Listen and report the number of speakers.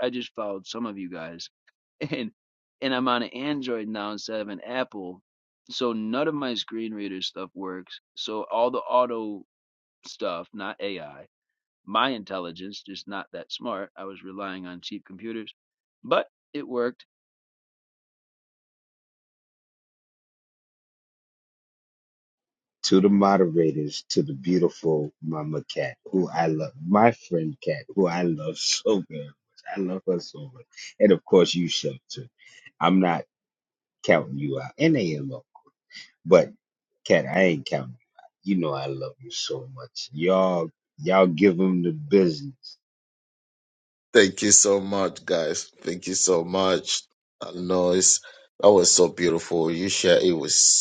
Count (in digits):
3